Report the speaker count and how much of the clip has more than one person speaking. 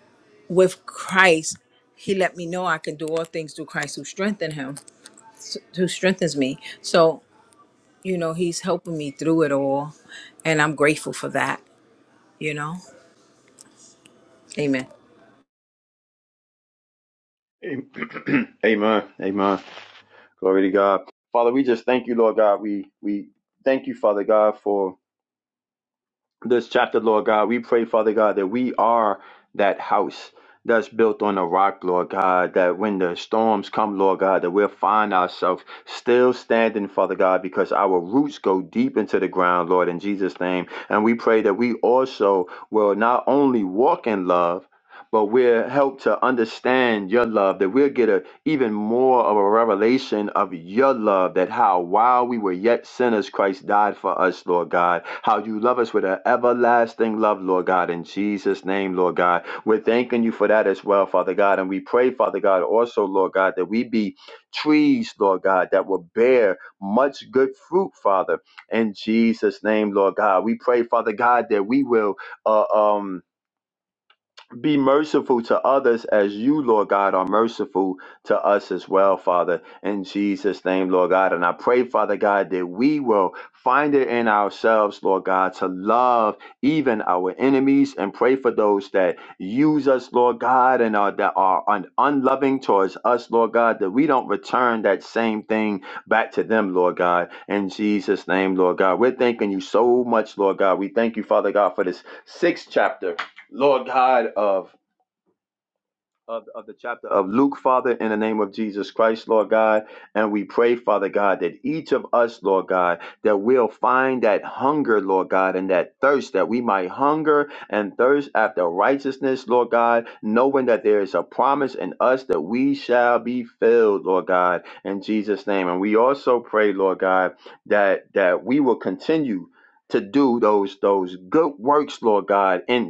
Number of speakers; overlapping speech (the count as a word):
two, no overlap